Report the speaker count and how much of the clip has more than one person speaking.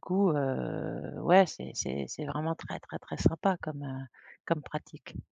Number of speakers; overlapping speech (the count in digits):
1, no overlap